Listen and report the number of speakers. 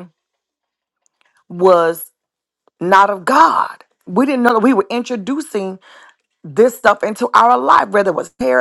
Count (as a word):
one